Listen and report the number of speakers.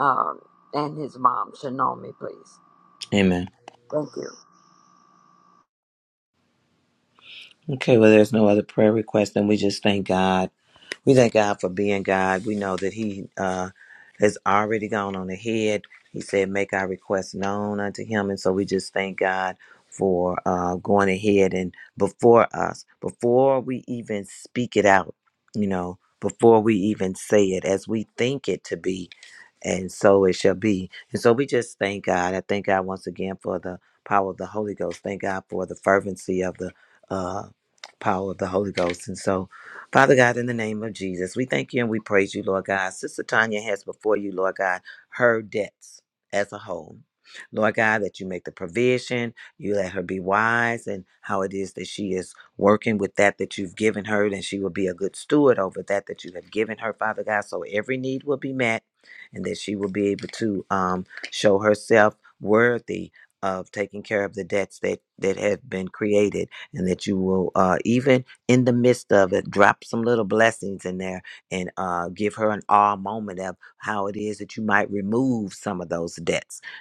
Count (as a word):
two